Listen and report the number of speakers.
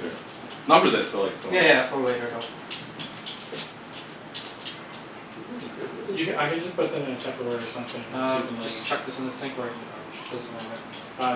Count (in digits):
3